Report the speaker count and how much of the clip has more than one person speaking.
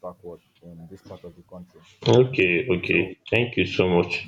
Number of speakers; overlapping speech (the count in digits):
2, about 6%